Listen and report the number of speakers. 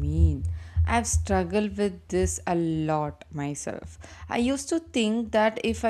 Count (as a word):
one